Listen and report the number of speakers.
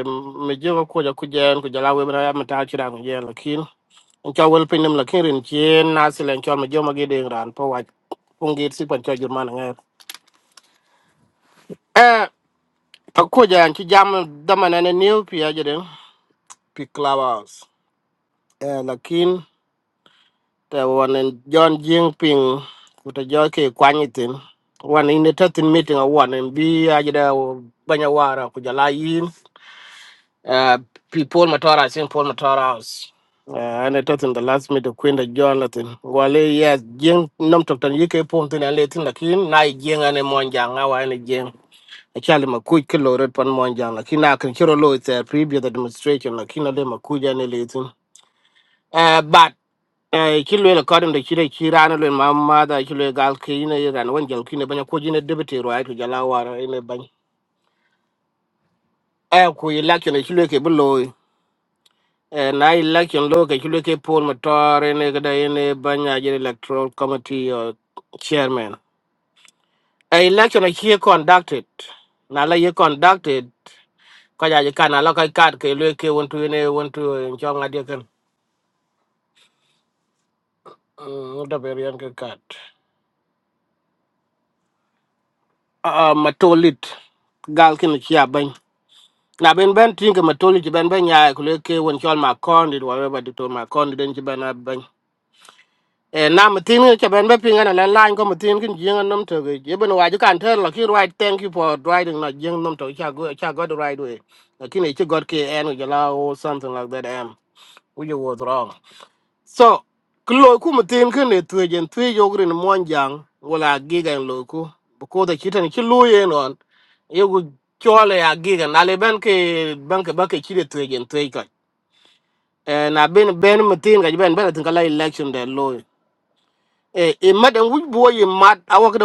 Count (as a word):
one